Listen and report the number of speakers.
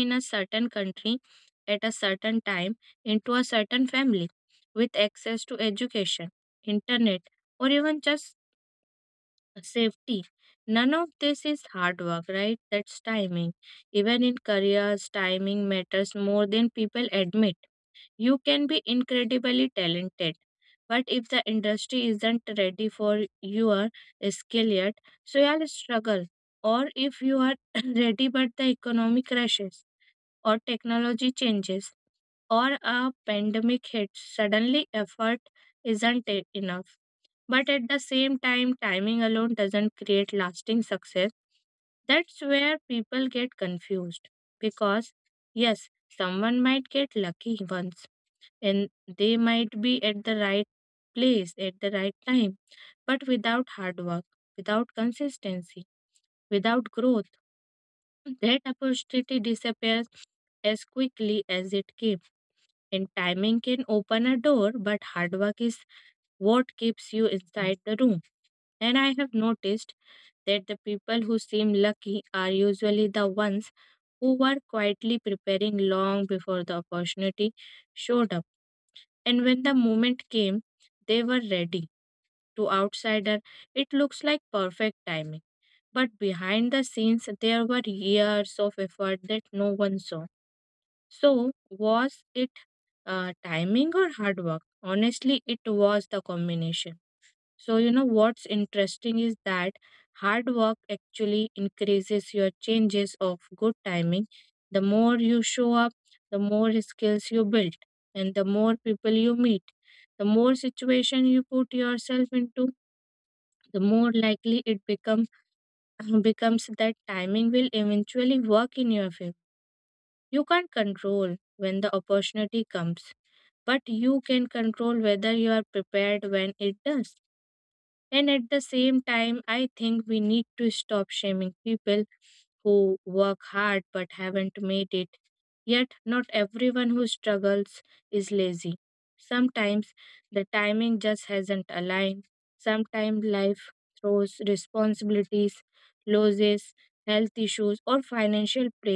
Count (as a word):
one